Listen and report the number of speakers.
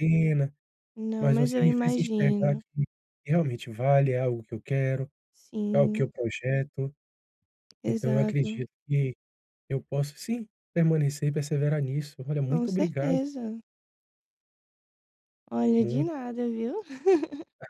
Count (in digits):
2